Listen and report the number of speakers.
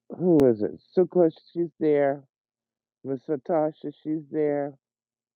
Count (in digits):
1